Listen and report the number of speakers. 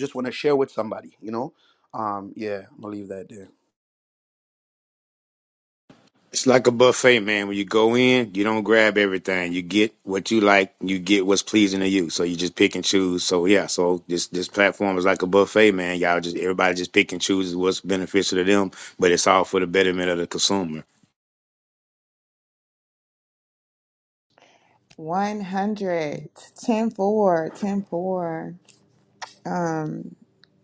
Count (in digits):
3